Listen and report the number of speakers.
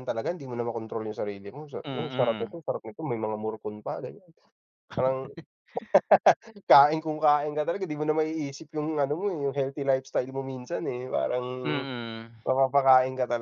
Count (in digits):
2